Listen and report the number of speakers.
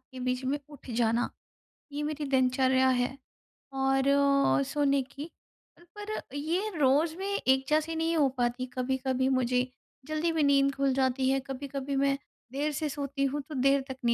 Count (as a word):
one